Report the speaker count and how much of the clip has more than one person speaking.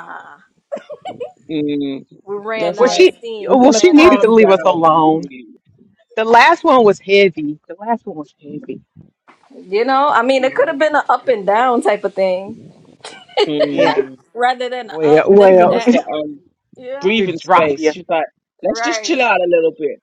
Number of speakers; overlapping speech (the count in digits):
3, about 28%